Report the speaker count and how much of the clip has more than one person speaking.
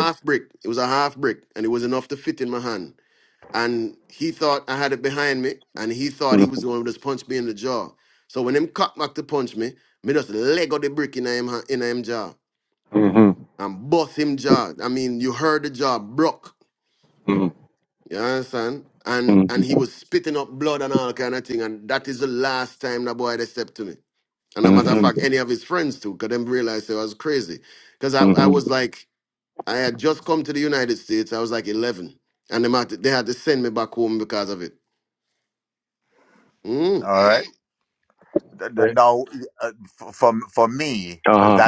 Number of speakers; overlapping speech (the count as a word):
three, about 5%